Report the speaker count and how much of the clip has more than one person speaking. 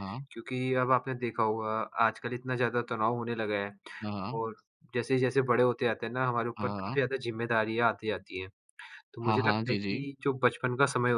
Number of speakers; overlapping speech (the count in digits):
2, about 12%